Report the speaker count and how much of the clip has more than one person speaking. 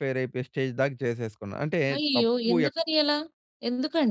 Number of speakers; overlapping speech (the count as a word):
two, about 20%